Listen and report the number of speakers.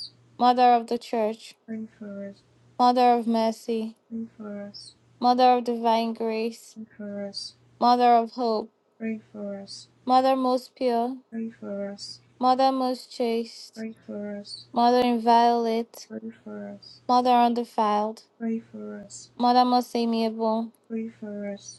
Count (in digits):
2